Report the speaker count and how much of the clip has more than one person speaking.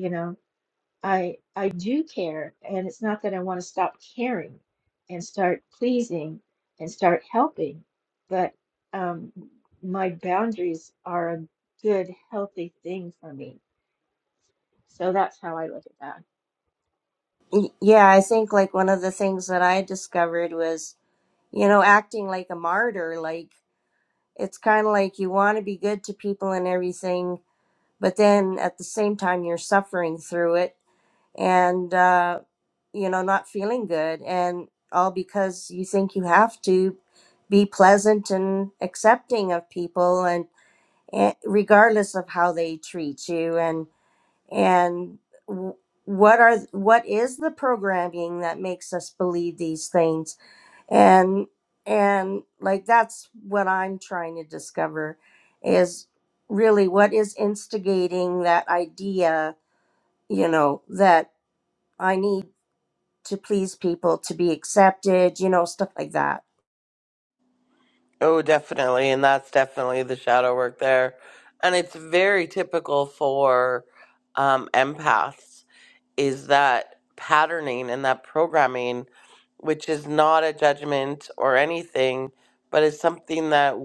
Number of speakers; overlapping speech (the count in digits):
3, no overlap